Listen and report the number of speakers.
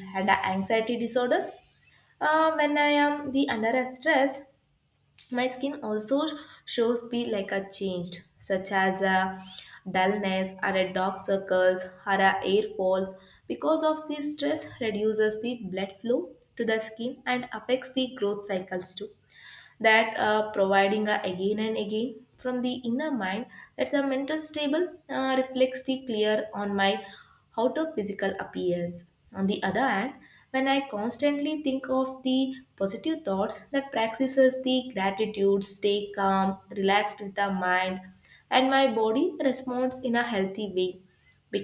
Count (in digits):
1